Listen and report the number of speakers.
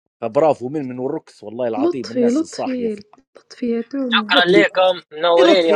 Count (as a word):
three